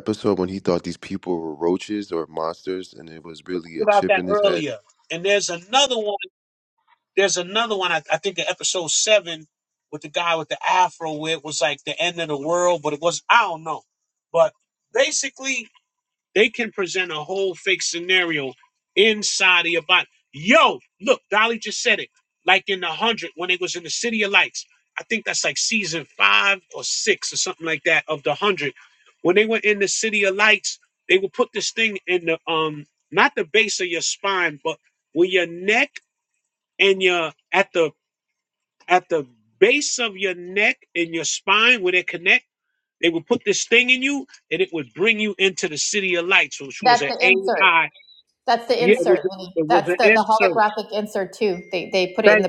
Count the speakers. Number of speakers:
3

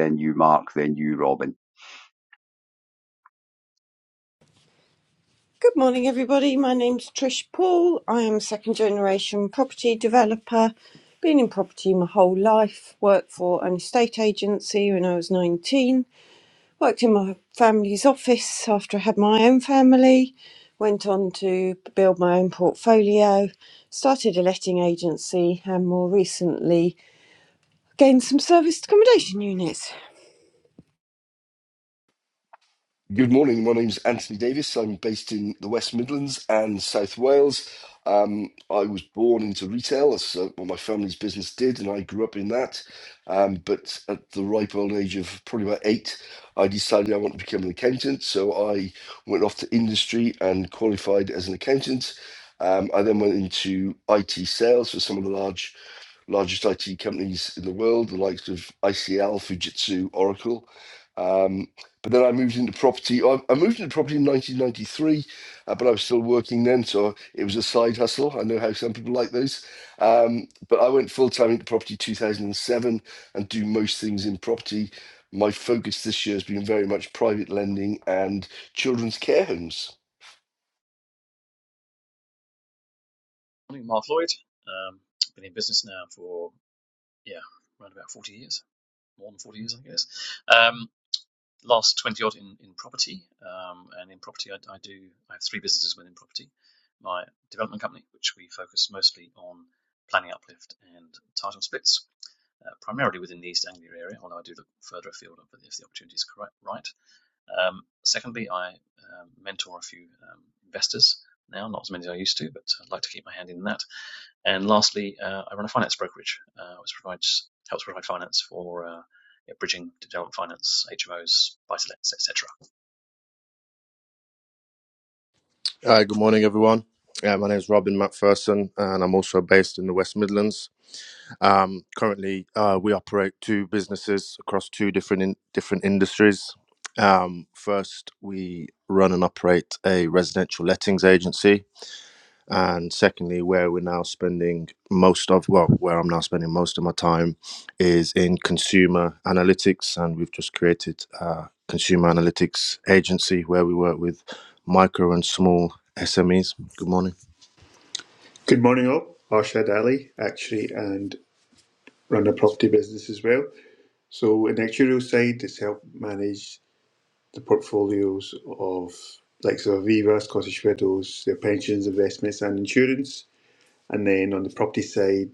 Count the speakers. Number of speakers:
6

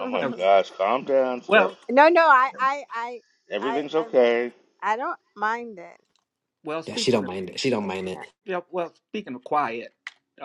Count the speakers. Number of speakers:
4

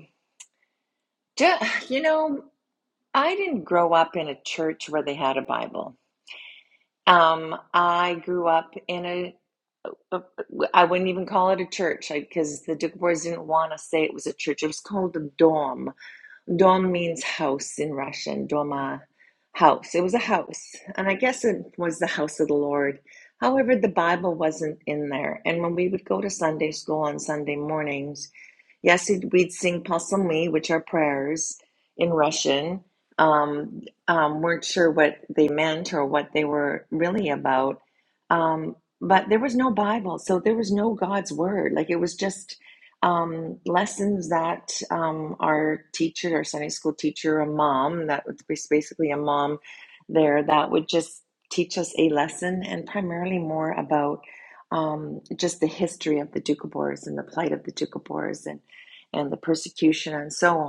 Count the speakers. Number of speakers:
1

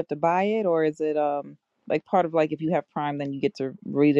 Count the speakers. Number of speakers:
1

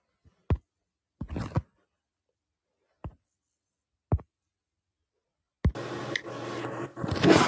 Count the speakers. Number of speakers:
0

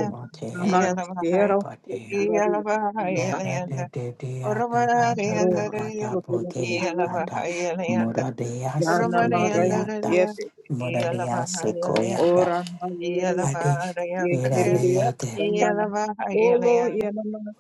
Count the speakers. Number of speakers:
3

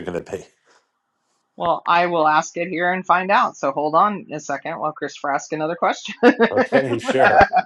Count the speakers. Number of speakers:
2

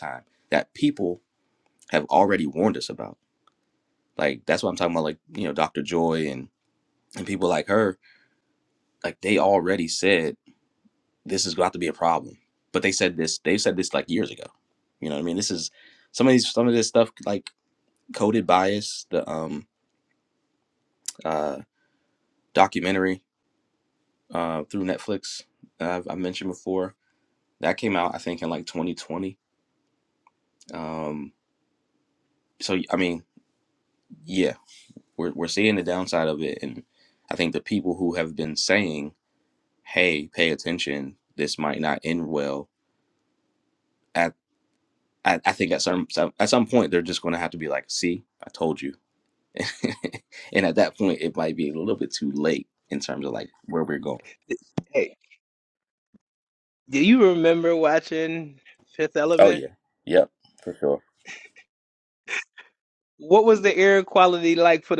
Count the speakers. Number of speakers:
2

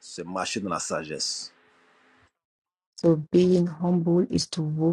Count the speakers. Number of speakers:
2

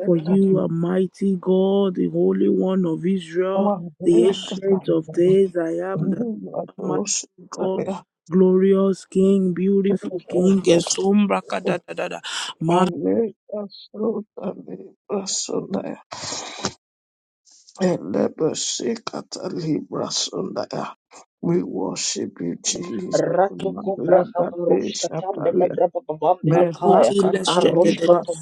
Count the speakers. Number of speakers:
3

